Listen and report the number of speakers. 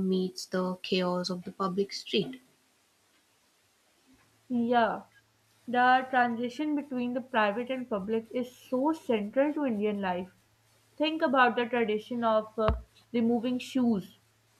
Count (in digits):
2